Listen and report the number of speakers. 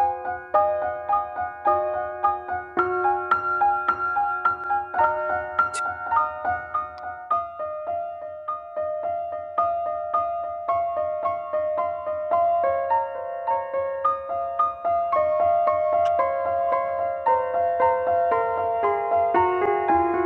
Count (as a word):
zero